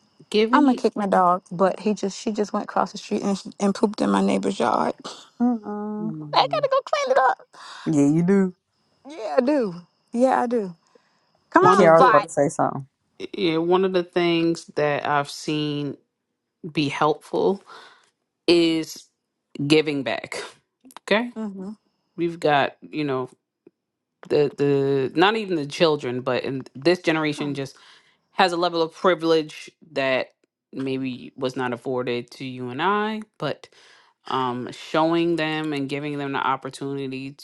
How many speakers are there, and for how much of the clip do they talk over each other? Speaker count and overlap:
3, about 2%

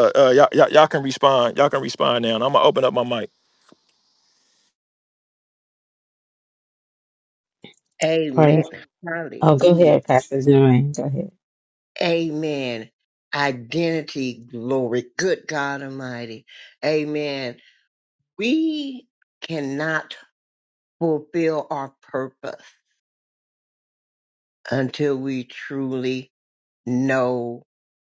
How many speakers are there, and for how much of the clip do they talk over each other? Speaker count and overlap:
3, about 3%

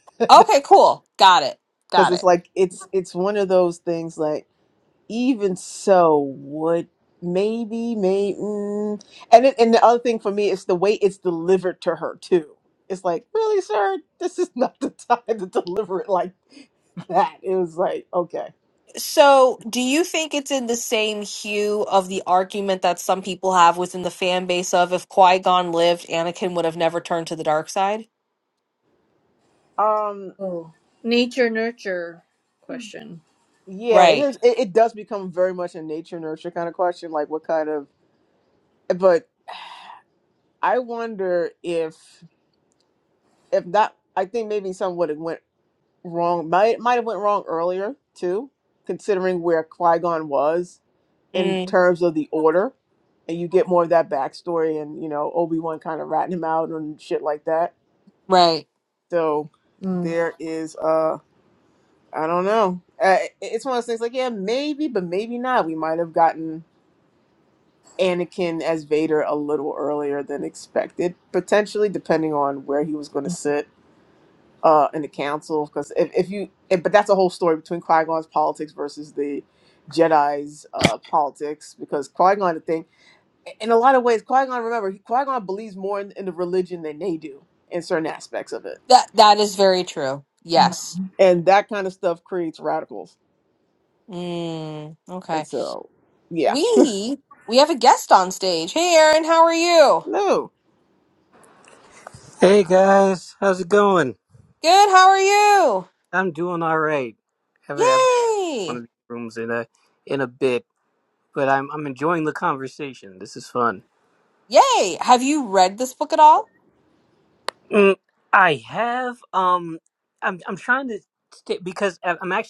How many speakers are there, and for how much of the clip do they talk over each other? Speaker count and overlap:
4, about 1%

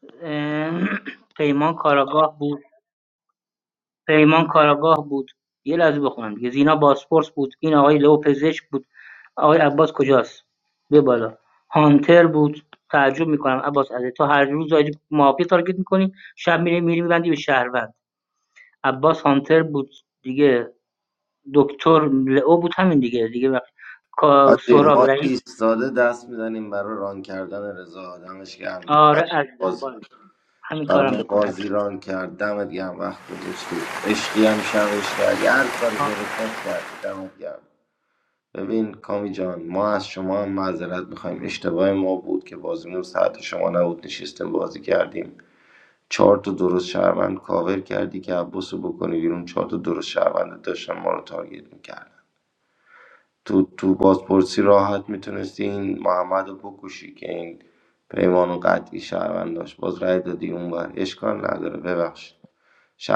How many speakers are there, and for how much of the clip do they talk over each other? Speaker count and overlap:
2, about 3%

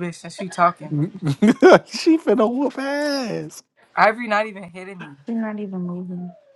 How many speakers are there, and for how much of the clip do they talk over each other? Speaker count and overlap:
3, no overlap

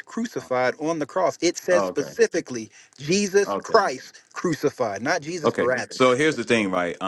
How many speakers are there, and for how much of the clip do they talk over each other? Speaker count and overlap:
2, about 21%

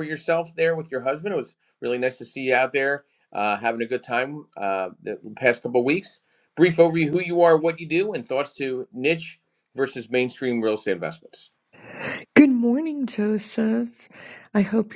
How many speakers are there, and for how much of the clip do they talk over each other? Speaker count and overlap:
2, no overlap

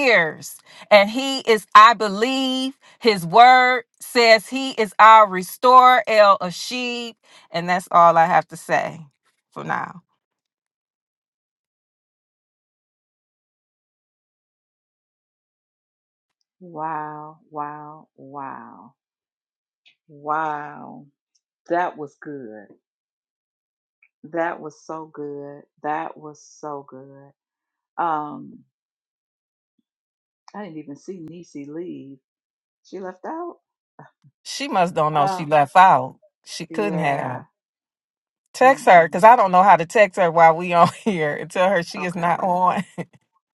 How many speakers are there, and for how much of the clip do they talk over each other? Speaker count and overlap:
2, about 5%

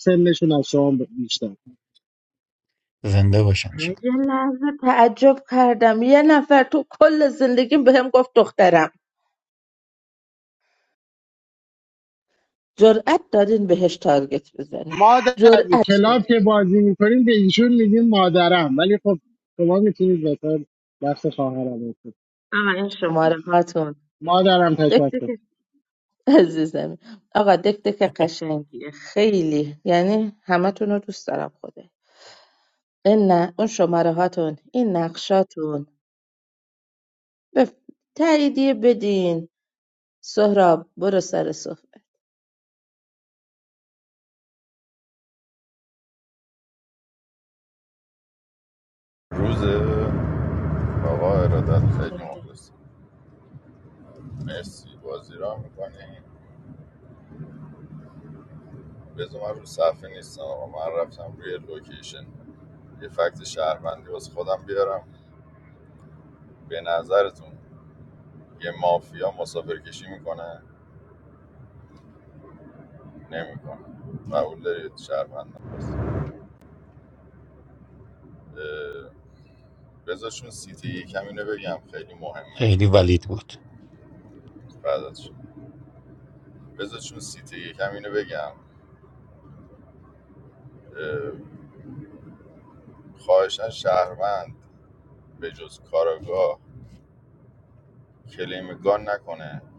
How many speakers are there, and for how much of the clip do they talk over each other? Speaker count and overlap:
4, about 1%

